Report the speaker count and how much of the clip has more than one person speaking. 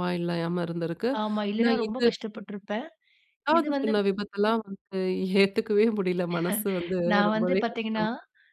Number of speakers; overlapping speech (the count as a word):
two, about 23%